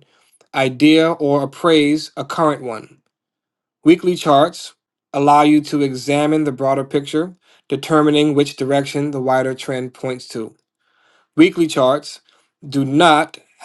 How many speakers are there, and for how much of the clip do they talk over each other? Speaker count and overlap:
one, no overlap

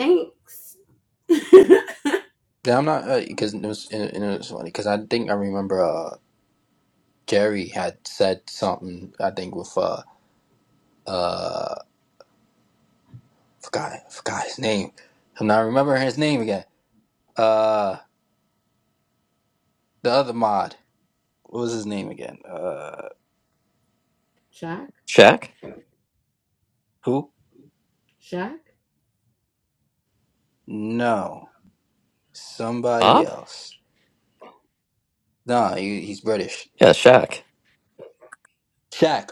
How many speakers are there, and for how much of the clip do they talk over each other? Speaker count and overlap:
three, about 1%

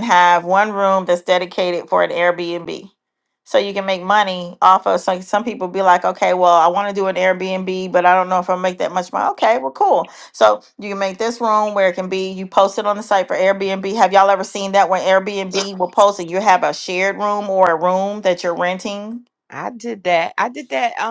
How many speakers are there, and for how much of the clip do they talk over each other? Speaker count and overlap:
two, no overlap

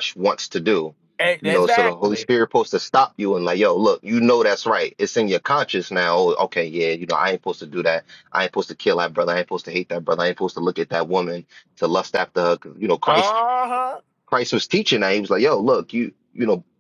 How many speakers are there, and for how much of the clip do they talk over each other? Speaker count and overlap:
two, about 6%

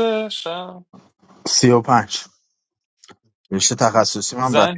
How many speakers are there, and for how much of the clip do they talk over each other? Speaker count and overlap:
two, about 8%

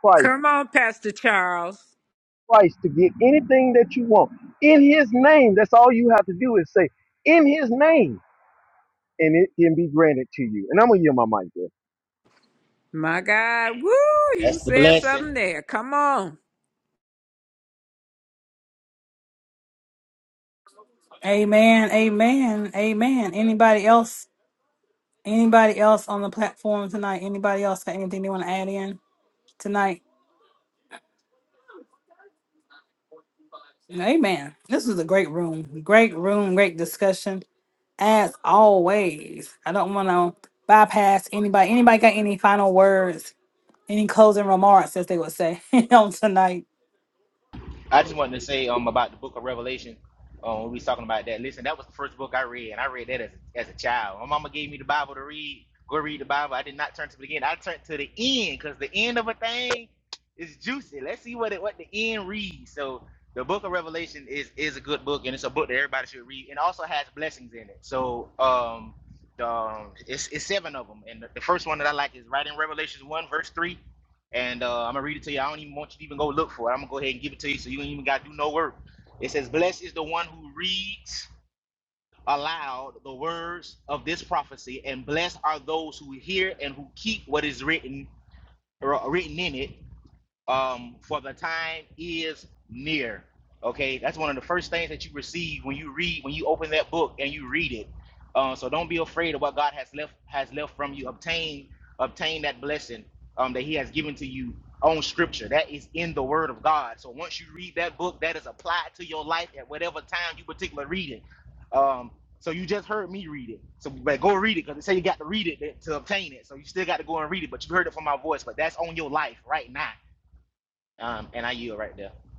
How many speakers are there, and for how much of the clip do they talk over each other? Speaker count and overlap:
four, about 1%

